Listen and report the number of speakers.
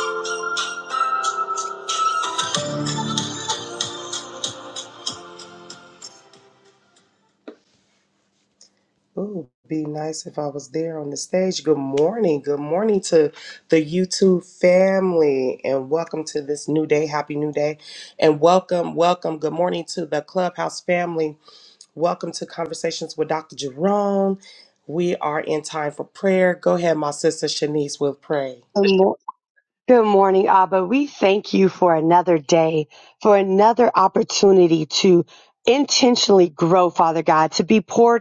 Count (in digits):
2